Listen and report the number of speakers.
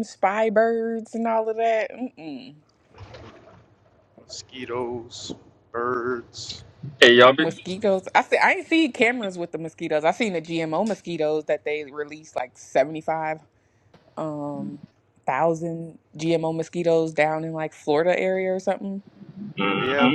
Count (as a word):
three